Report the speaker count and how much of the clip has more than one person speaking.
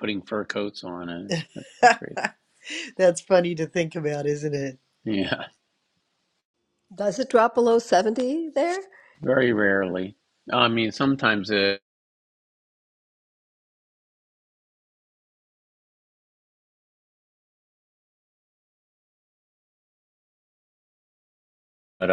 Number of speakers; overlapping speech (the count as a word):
three, no overlap